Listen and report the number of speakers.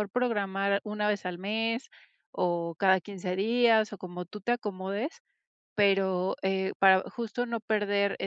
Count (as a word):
one